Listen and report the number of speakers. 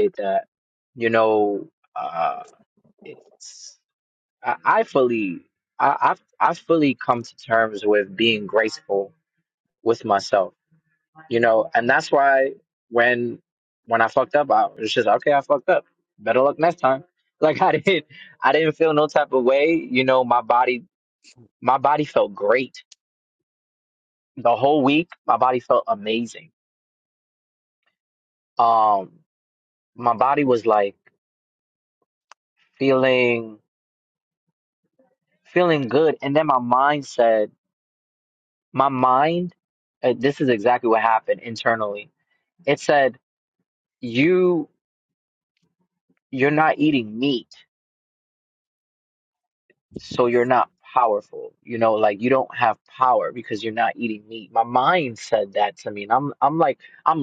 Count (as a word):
one